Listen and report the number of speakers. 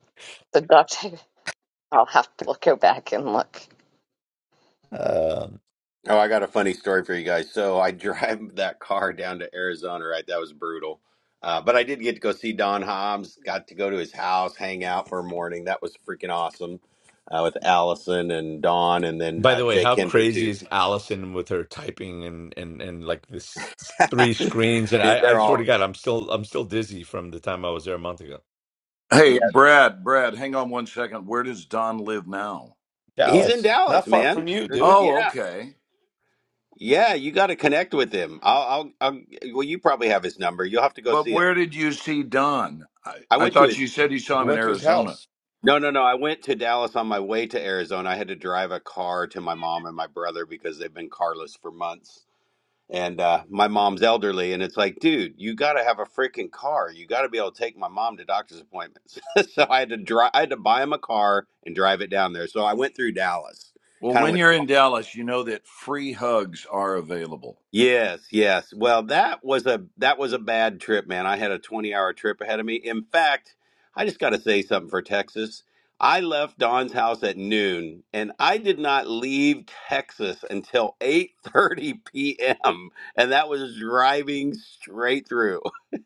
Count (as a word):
four